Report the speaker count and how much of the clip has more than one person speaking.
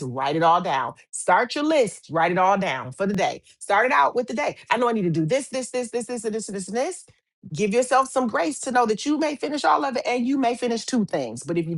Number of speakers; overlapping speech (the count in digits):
1, no overlap